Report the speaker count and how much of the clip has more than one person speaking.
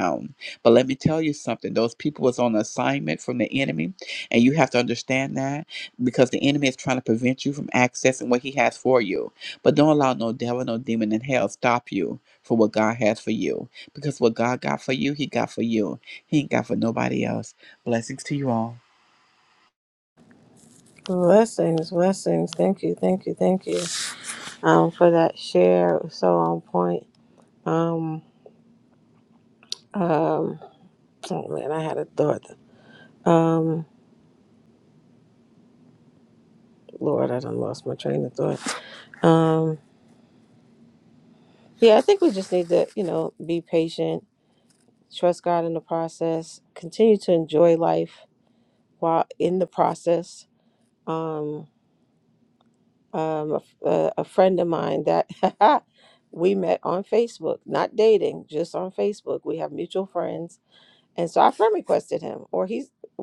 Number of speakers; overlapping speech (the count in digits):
2, no overlap